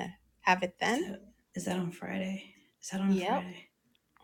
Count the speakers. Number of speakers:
two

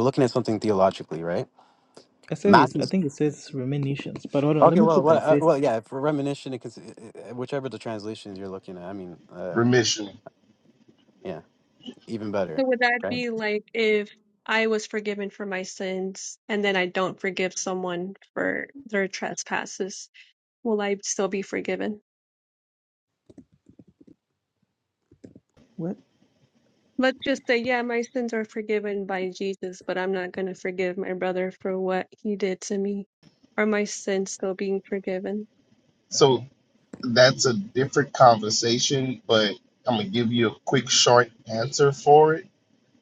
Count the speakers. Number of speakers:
four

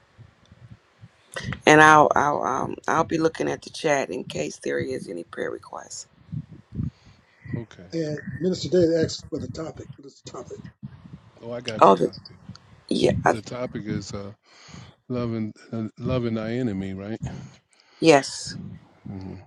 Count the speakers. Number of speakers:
three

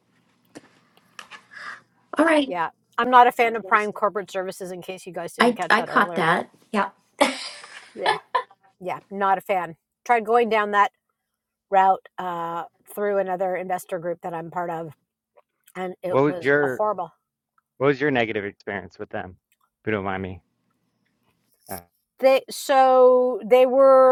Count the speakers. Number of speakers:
three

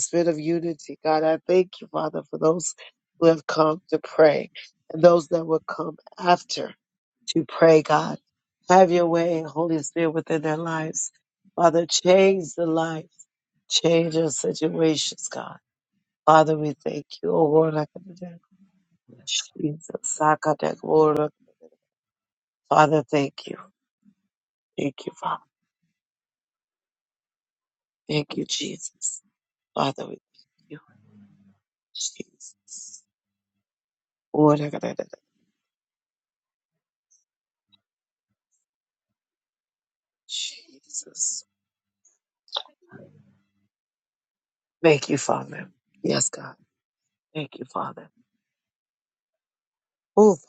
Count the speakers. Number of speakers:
one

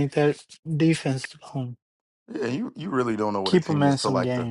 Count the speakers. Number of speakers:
two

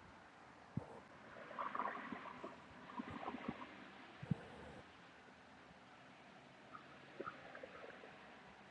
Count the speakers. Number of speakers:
zero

